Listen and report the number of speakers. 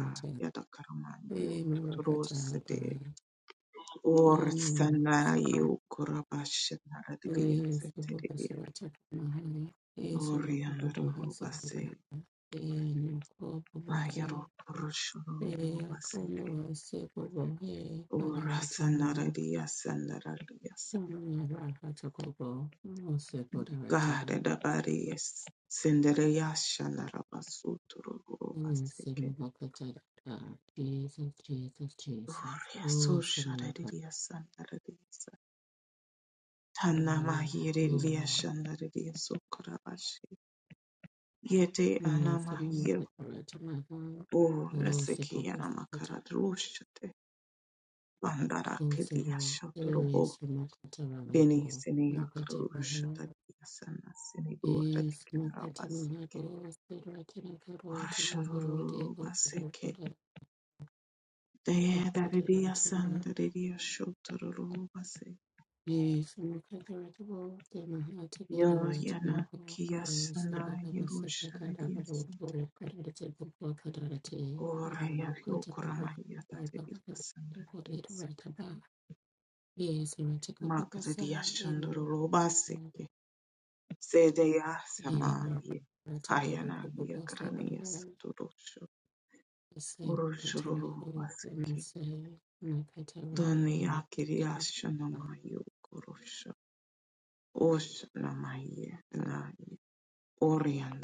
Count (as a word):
two